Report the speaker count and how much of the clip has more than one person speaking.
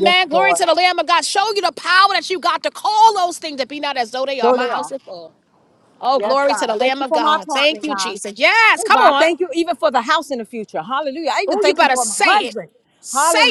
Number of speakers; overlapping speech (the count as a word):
two, about 36%